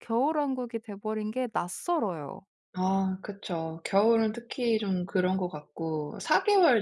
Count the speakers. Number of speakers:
two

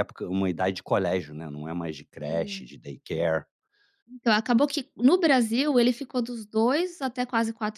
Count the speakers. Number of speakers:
two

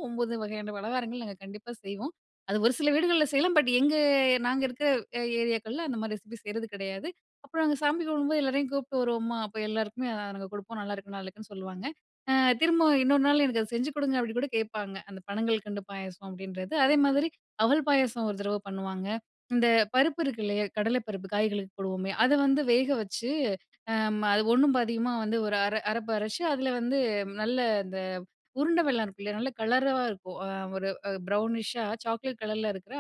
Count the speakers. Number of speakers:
one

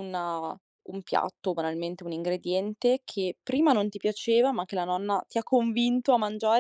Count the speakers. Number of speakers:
one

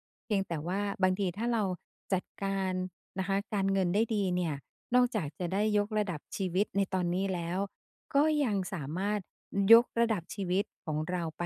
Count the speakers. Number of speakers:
one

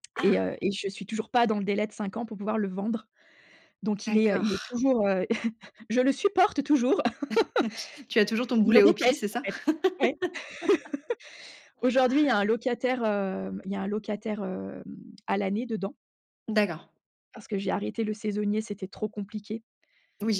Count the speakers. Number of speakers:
two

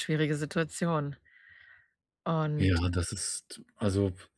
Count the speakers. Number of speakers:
two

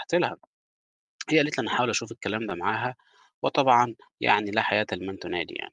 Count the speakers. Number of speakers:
one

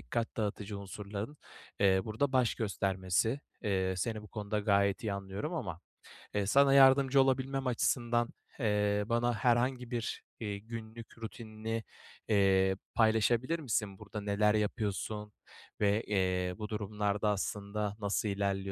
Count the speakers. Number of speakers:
one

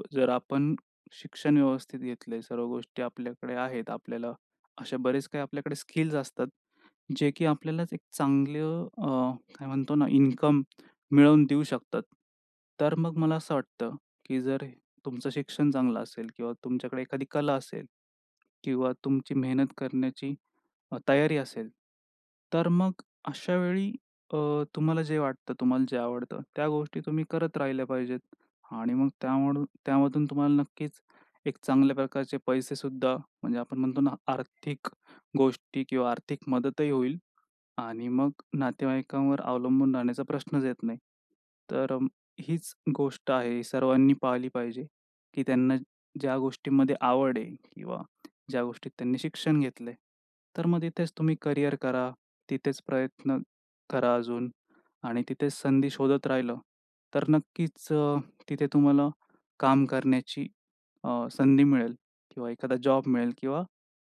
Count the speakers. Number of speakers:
one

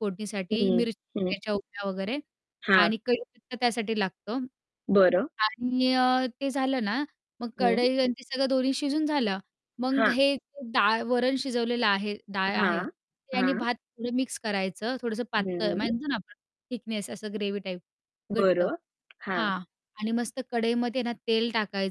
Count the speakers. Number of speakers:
two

